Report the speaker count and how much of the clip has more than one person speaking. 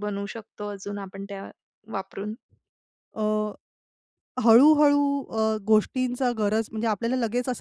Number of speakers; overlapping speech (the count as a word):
two, no overlap